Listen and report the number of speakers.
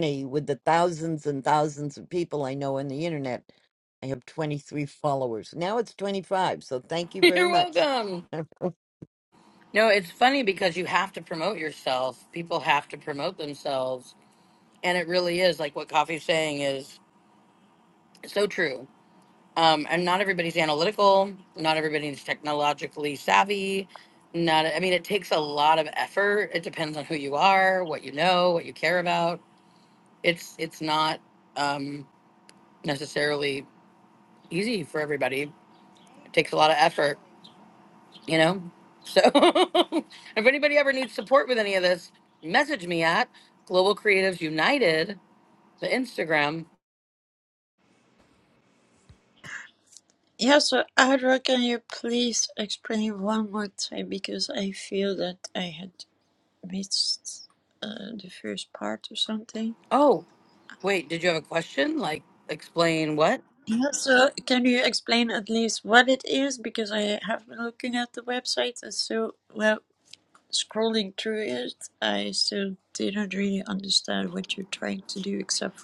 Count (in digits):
3